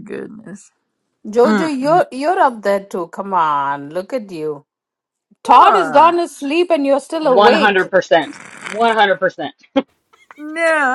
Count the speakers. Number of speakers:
three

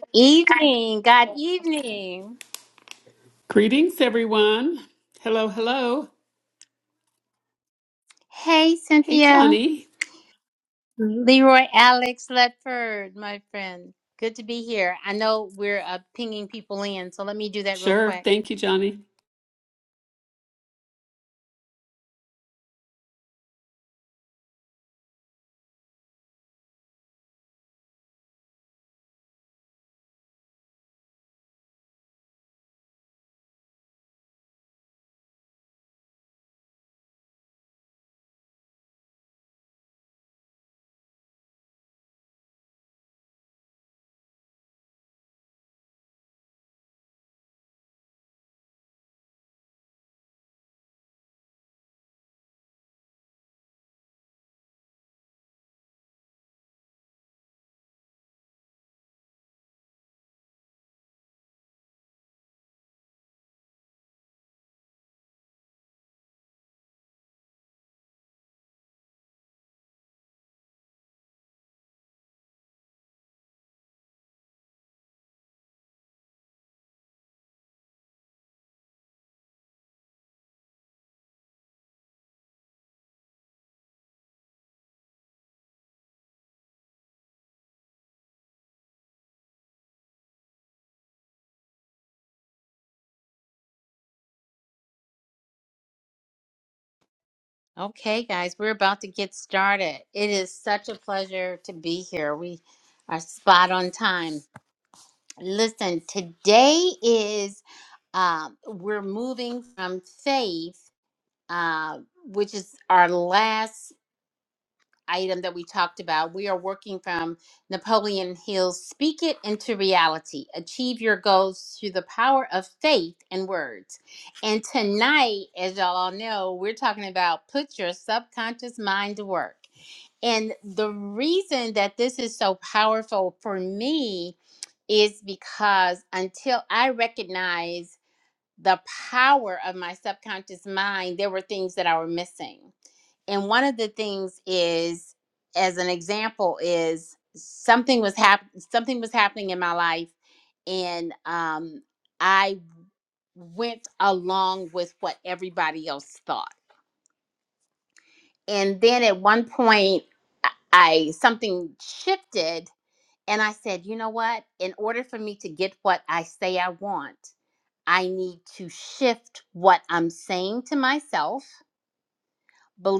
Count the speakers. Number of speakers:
two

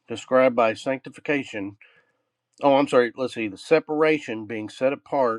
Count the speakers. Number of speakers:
one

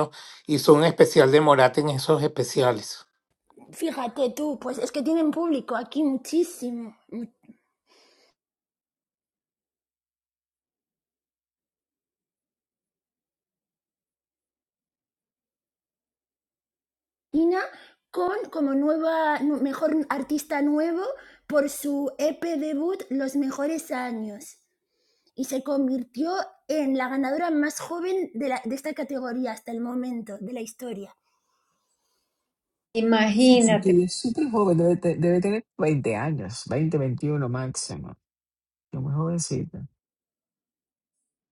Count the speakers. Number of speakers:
four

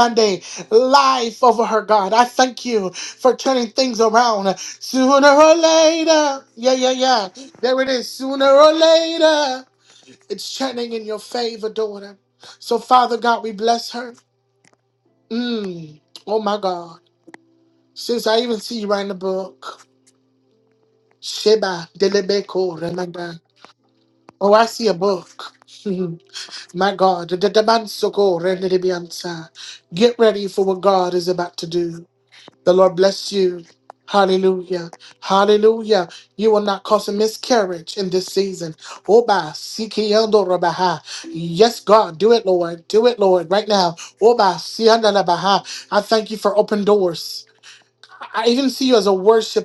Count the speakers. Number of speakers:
one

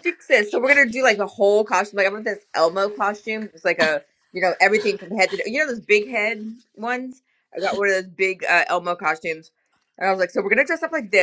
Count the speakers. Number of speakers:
one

